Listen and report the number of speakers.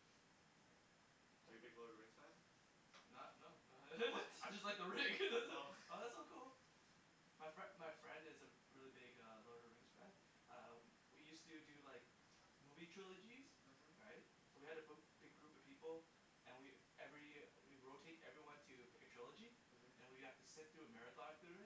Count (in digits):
2